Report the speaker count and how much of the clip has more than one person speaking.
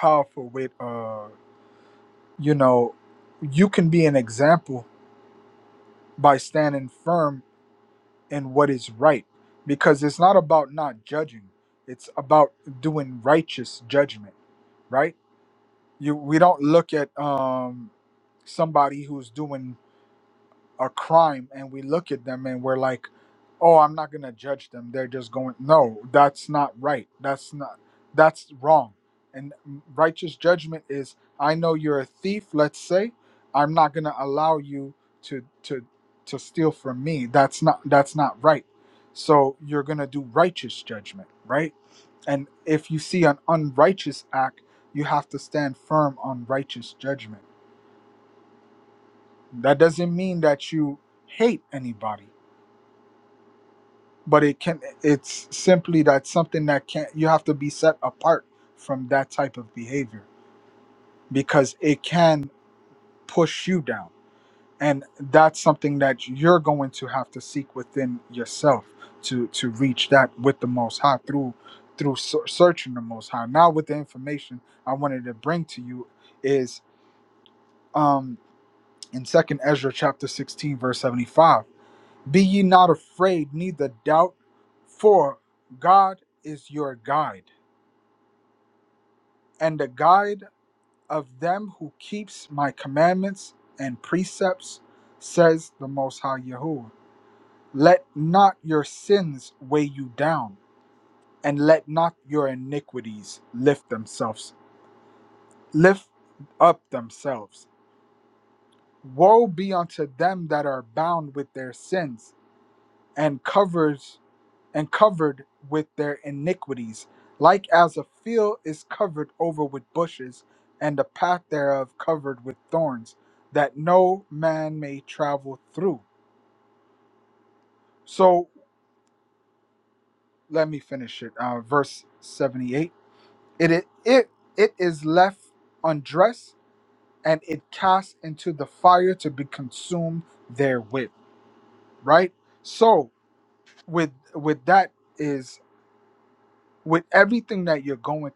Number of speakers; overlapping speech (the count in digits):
1, no overlap